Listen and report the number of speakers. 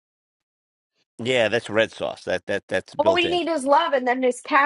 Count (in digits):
2